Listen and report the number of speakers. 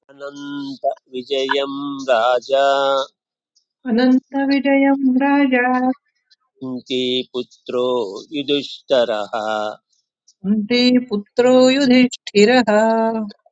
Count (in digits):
2